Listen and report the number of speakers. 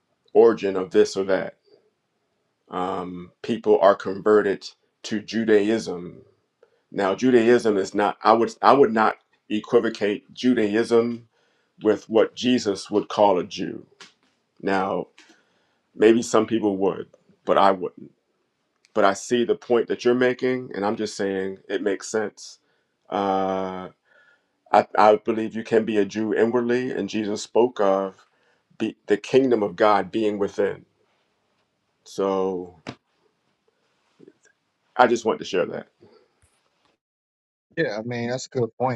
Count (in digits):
2